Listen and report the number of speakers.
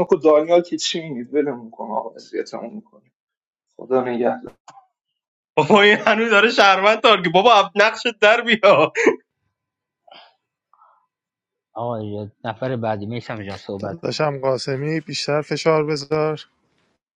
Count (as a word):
four